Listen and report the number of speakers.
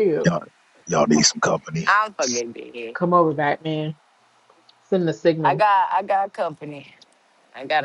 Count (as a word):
three